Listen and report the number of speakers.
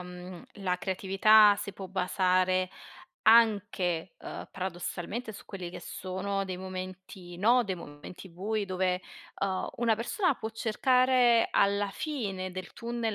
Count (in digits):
1